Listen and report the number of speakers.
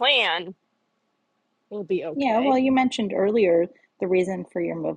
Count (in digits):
2